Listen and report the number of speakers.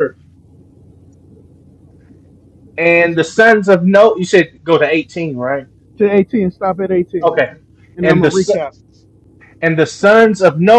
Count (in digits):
2